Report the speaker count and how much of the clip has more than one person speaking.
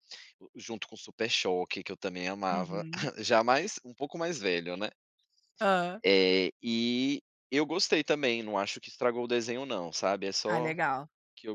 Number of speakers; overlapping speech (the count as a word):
two, about 5%